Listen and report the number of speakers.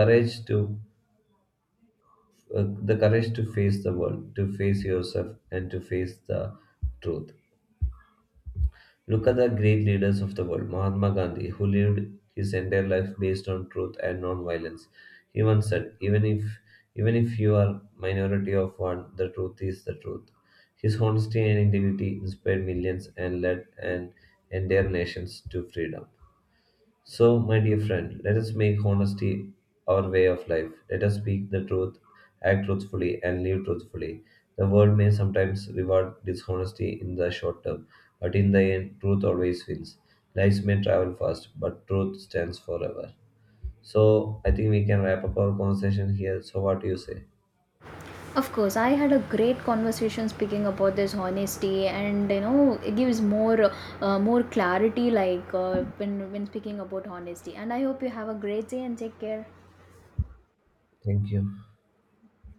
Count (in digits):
2